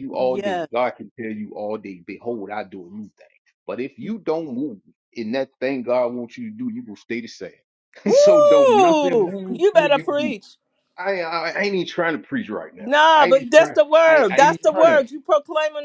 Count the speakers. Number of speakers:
2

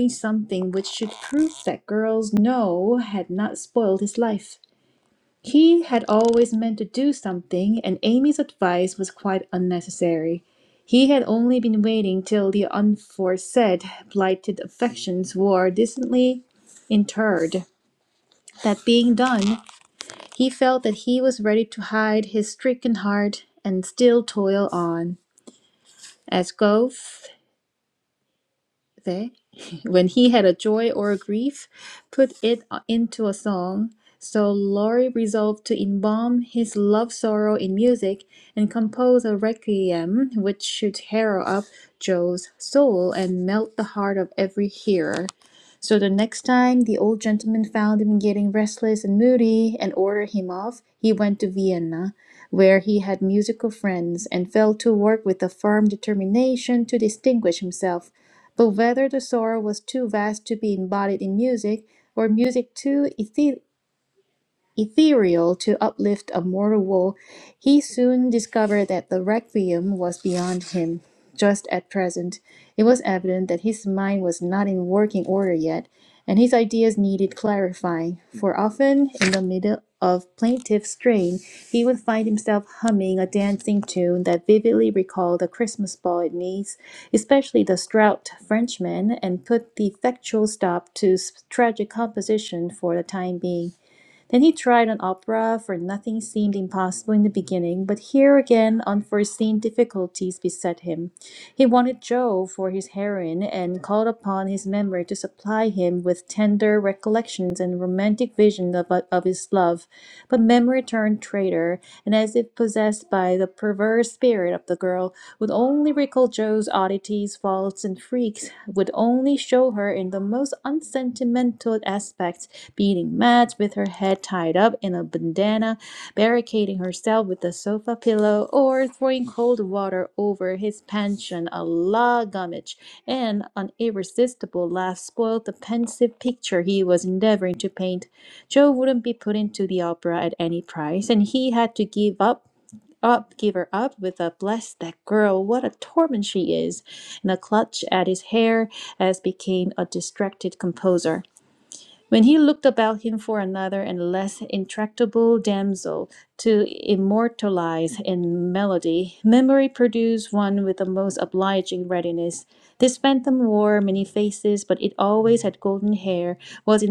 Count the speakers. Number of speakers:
1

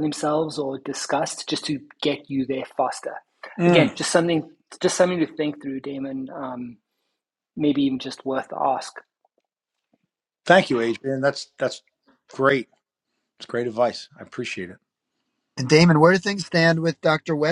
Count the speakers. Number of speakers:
3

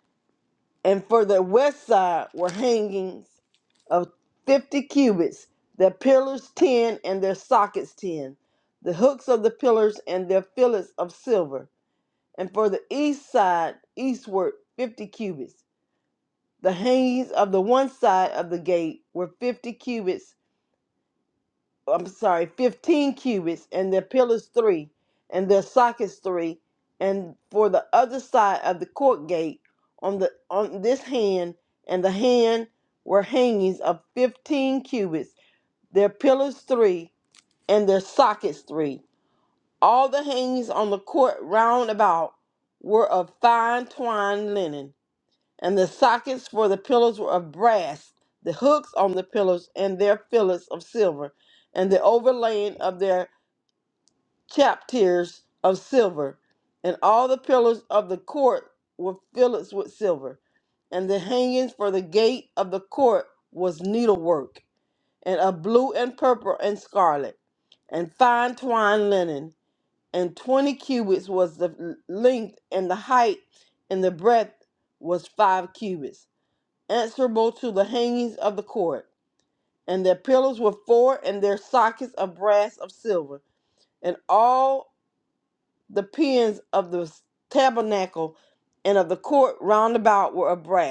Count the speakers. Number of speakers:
1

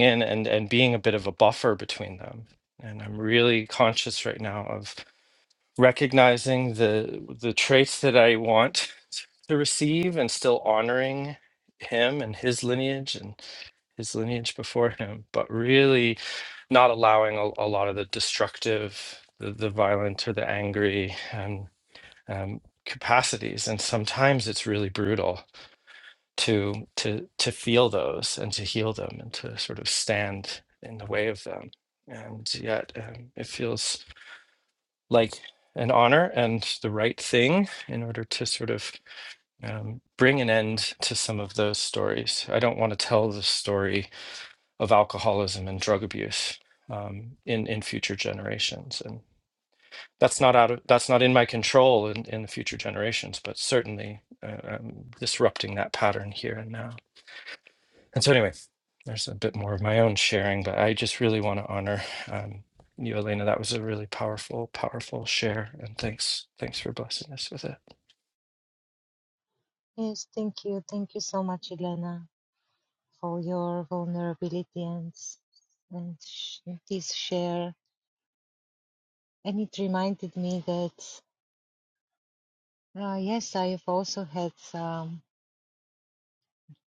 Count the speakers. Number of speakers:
2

